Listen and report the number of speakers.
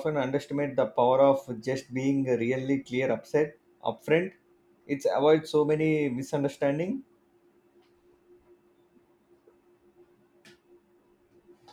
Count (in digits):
1